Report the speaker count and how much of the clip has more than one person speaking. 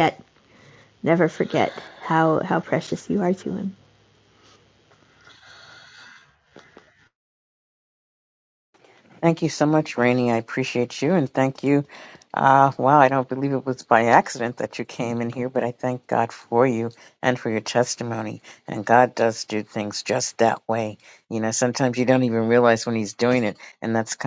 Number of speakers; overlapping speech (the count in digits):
2, no overlap